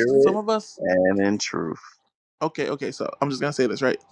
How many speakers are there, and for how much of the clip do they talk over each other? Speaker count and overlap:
2, about 10%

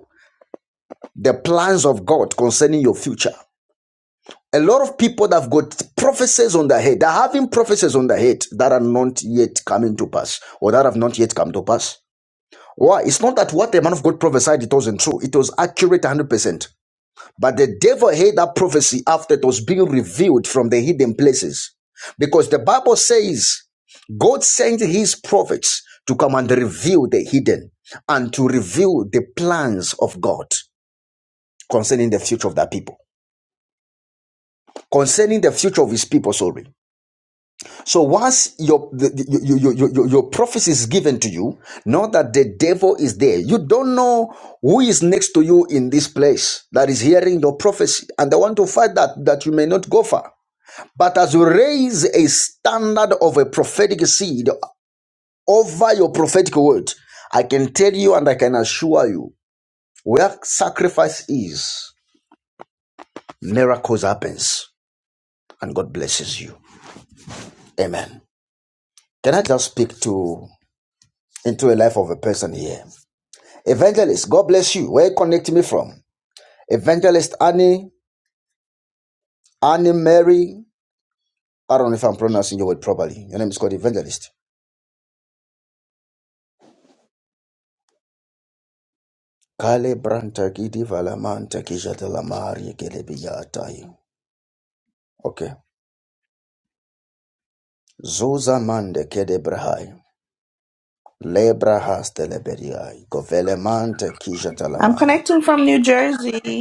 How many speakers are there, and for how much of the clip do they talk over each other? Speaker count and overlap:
2, under 1%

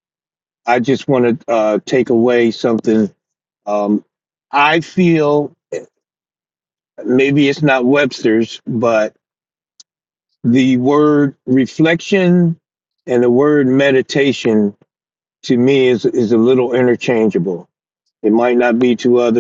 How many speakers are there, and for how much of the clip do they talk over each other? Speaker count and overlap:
1, no overlap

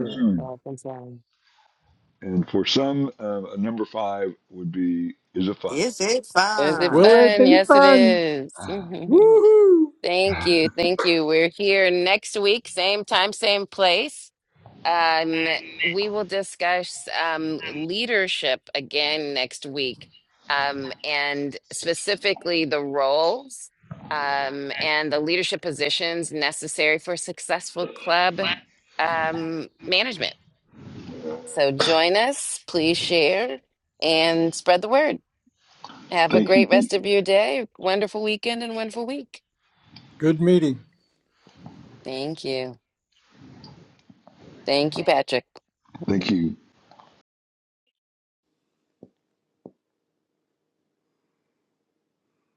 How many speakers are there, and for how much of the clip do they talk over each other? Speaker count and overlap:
4, about 5%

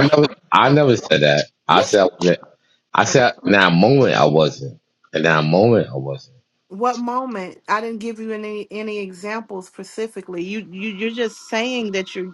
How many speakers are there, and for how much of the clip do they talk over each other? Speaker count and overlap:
2, about 6%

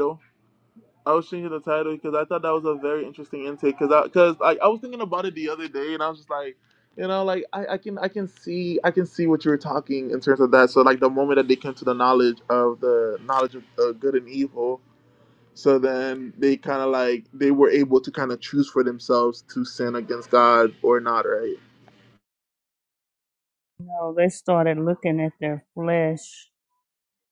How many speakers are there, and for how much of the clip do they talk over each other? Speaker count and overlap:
2, no overlap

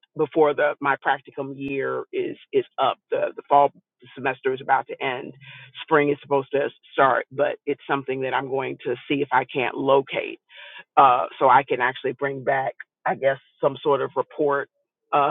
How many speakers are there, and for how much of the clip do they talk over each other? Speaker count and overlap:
1, no overlap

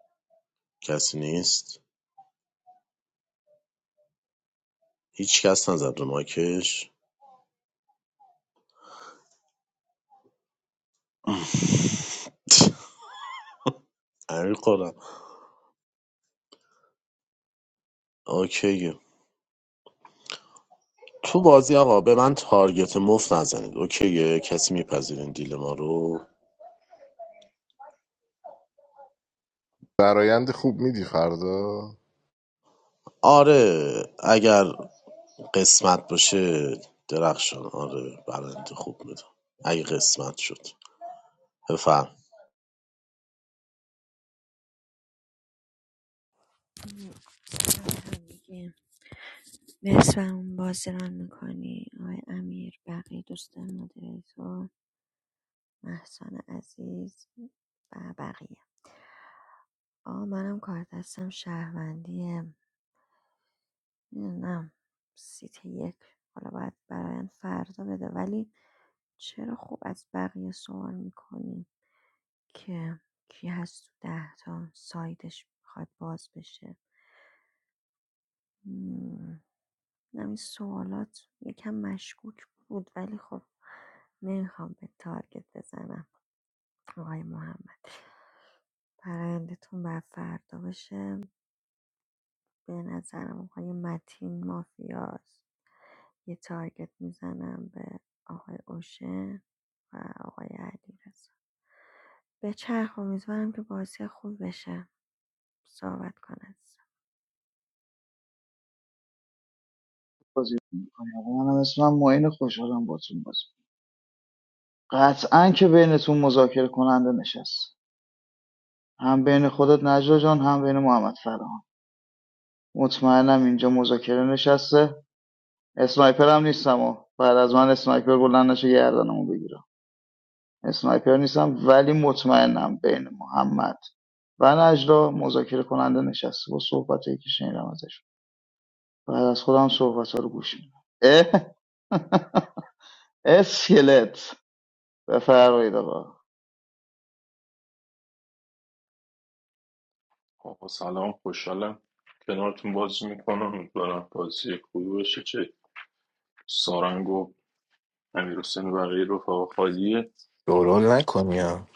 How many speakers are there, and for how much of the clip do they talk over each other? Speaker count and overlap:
6, no overlap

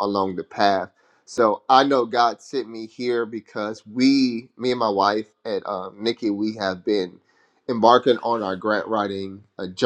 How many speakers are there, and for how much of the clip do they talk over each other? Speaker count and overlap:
1, no overlap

